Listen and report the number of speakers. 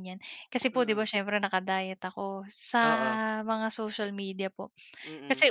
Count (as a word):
two